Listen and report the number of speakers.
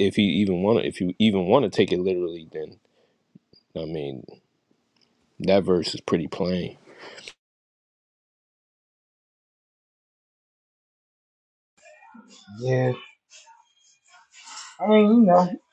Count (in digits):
2